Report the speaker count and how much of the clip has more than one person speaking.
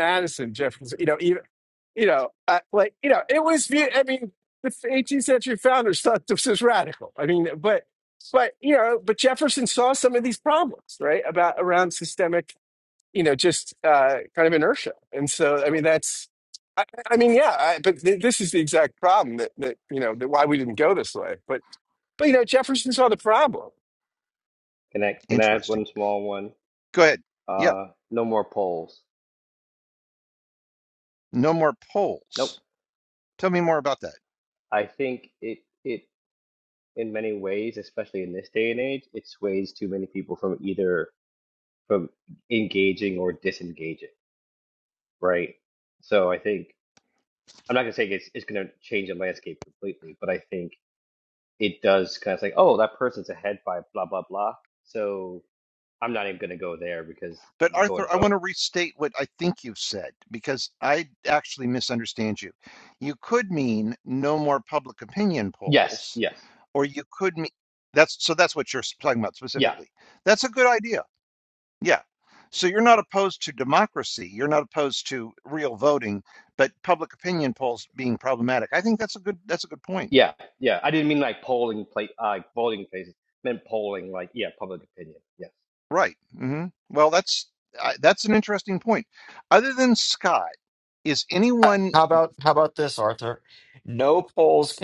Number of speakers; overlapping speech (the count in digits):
4, about 2%